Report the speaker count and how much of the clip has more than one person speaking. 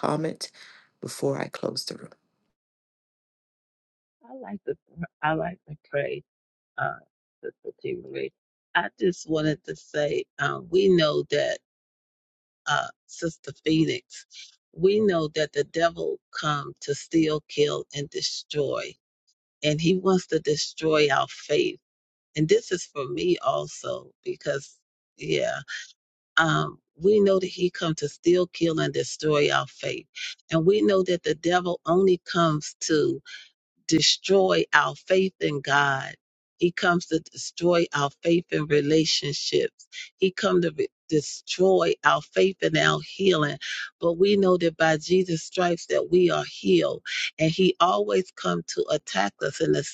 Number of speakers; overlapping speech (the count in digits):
2, no overlap